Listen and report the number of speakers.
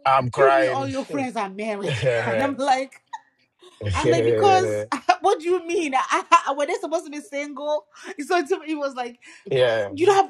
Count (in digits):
2